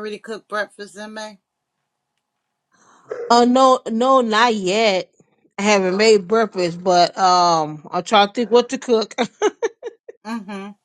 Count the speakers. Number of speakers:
2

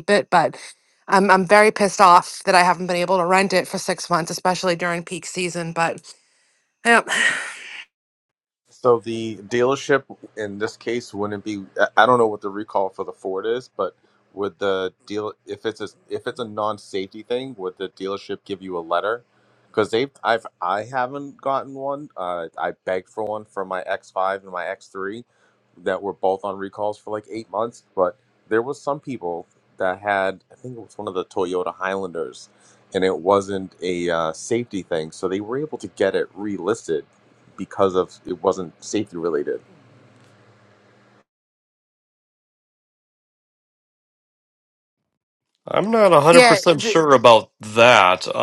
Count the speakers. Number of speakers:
3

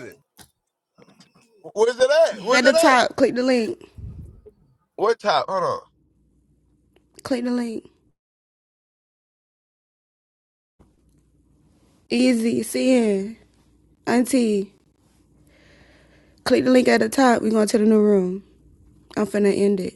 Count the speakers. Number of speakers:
2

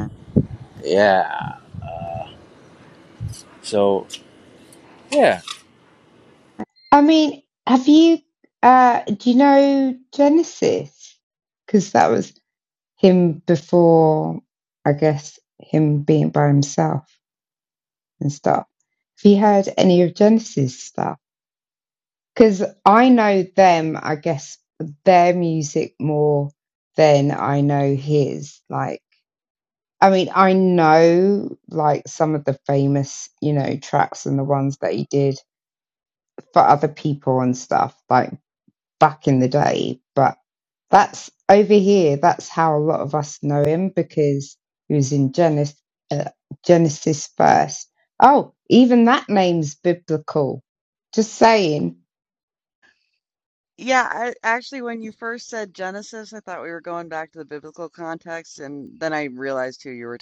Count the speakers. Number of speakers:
3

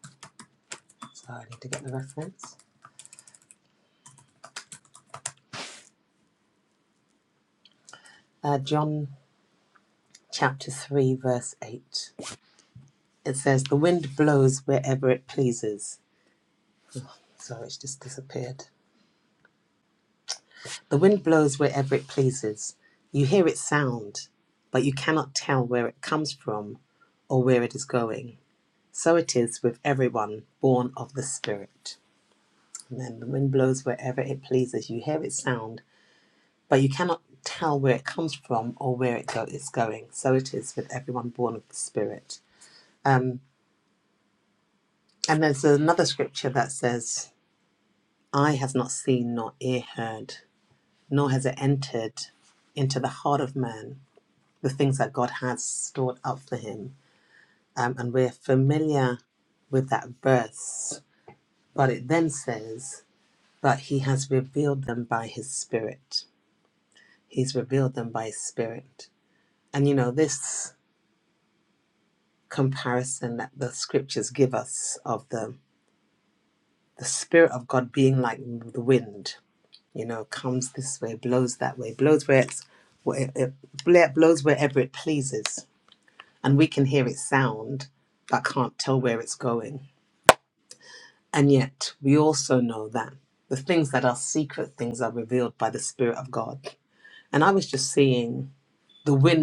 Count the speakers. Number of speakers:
1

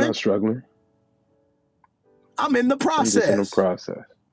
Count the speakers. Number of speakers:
2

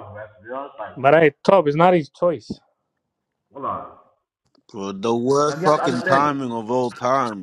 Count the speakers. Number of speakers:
3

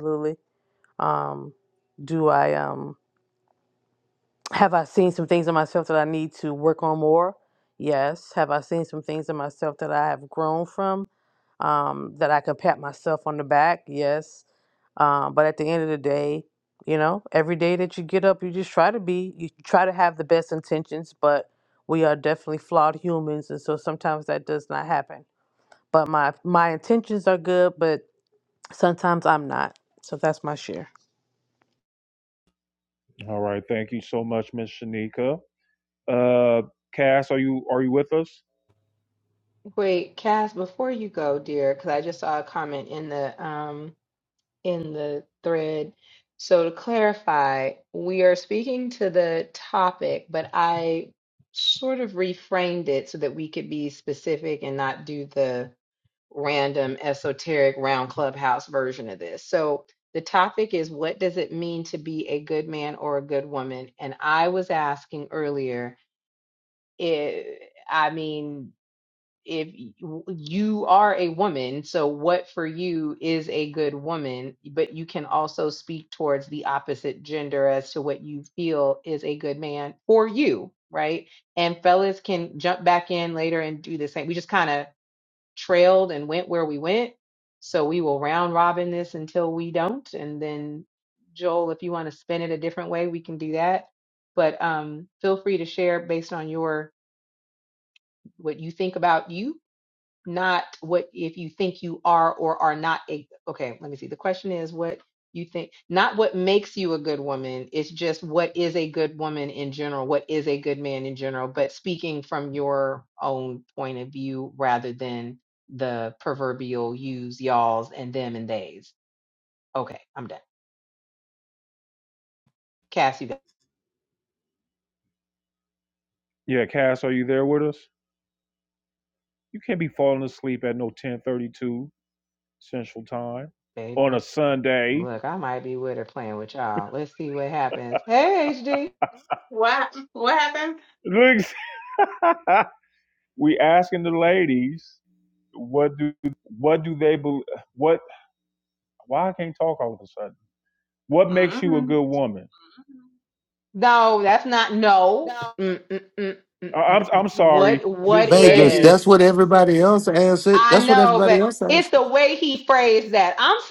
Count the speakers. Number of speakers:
5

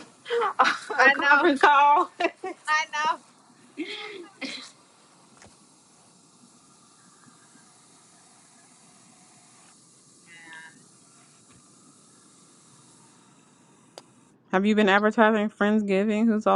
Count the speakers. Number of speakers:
3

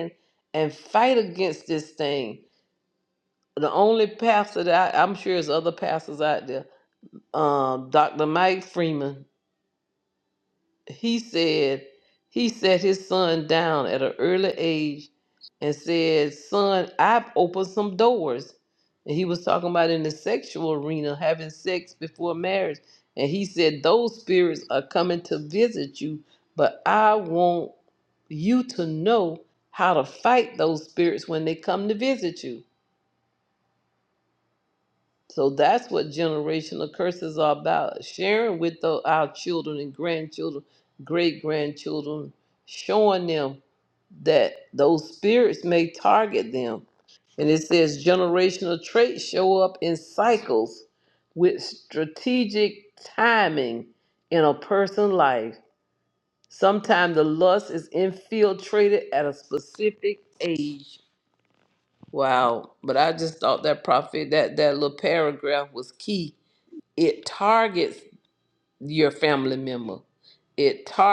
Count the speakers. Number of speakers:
1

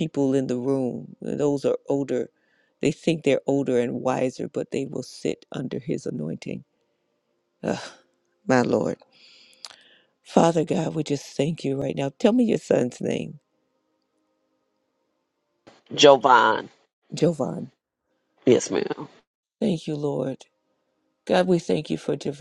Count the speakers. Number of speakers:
2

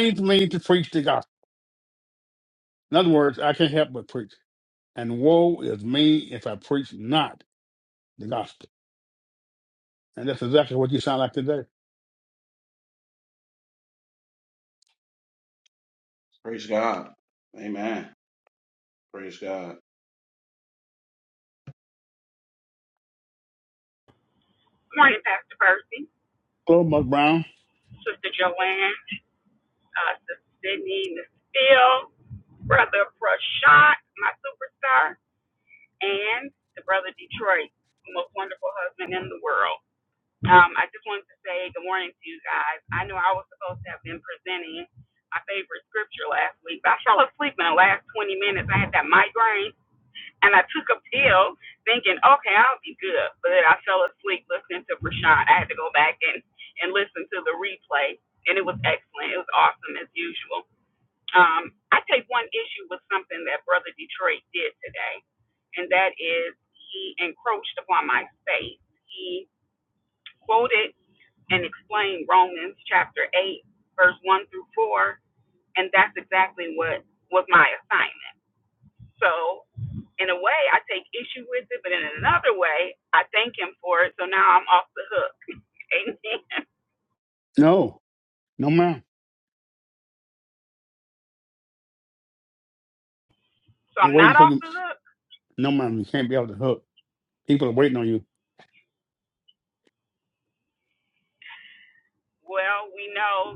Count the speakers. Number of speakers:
3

